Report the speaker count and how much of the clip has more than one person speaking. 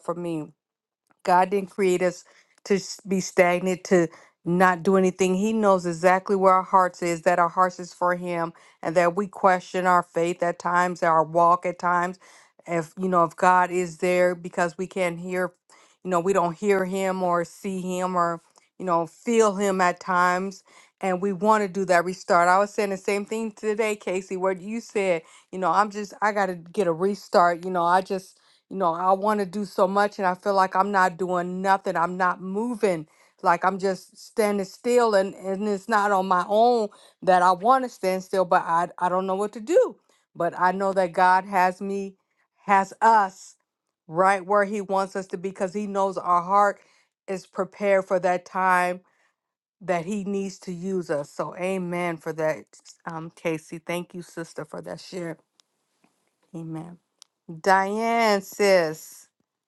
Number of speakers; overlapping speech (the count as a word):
one, no overlap